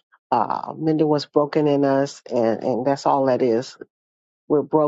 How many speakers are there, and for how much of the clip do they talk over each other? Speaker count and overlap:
1, no overlap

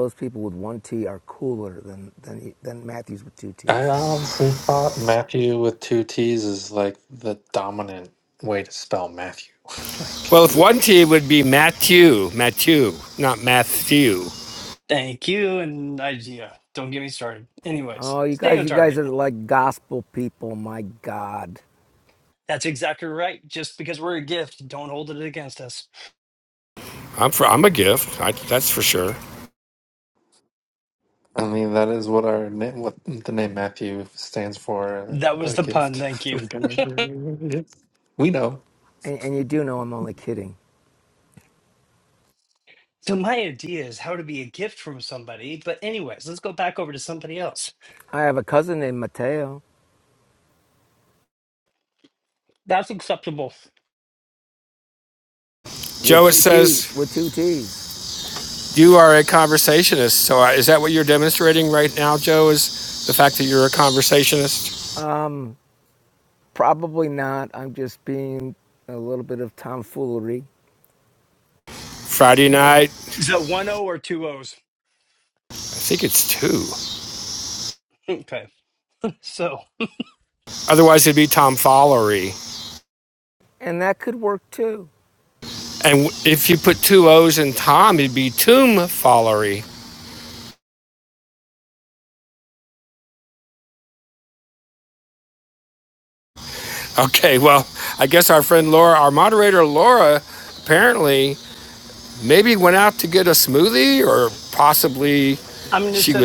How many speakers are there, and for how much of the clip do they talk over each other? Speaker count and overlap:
4, about 4%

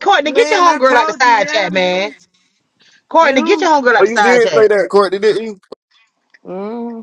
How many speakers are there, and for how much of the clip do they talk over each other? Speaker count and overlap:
3, about 43%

